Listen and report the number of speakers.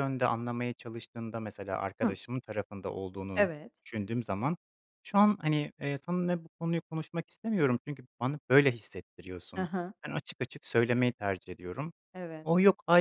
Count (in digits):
2